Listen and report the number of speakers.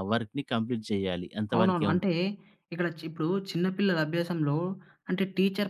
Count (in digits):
2